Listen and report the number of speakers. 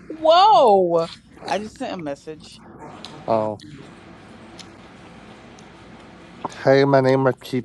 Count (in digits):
2